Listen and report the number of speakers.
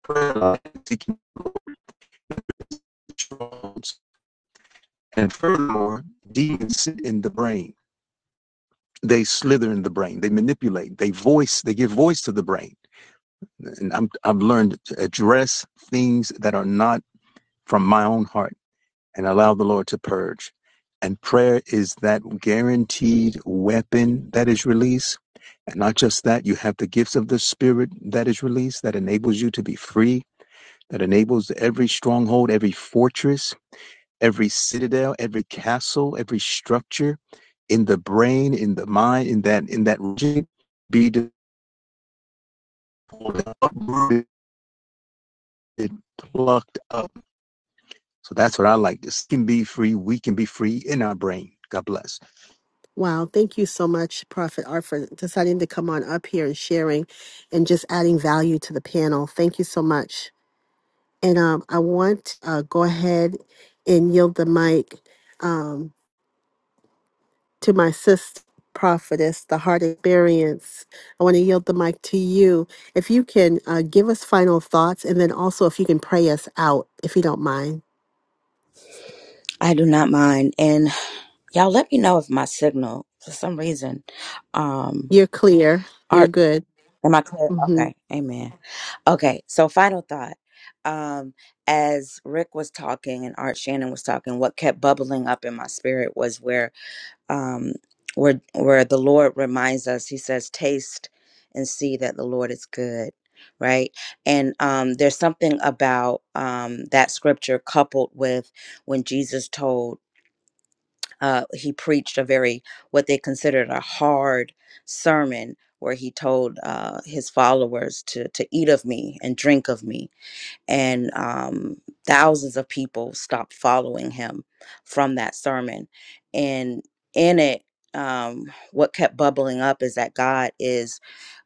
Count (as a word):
three